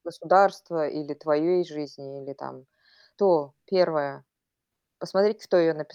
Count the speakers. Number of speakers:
one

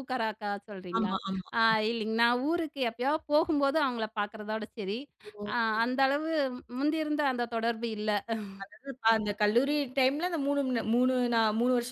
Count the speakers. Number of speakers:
two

